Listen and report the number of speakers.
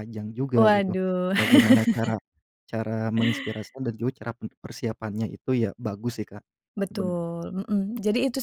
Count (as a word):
two